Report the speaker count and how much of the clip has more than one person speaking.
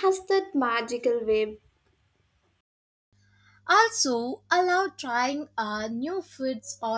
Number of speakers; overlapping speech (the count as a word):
two, no overlap